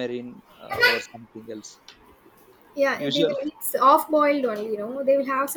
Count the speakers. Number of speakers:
2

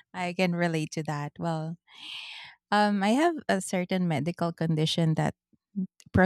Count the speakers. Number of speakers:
1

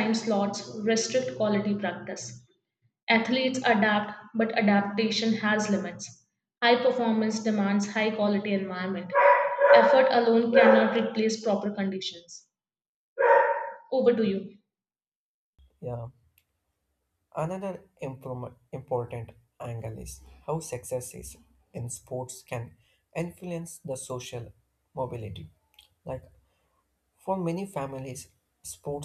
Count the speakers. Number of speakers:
2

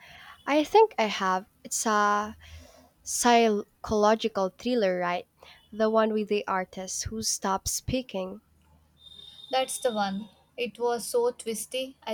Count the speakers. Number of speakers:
2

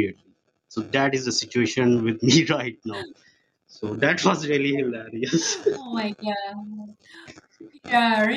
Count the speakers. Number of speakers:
2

